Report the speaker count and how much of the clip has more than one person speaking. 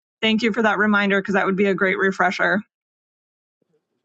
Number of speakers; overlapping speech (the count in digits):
1, no overlap